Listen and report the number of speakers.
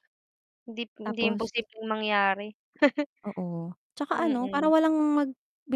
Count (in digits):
2